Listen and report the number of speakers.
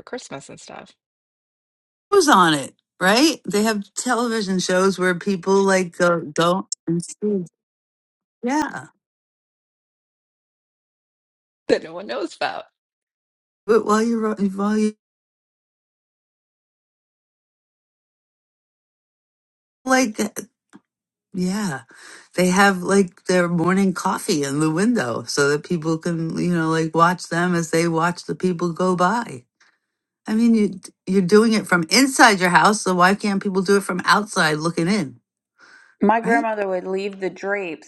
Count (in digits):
3